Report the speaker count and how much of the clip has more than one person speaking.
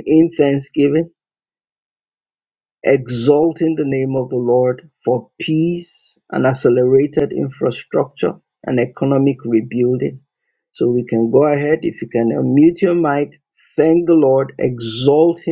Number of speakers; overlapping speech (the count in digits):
1, no overlap